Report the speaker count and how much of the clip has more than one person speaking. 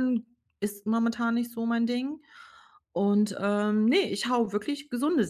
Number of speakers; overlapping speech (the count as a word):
one, no overlap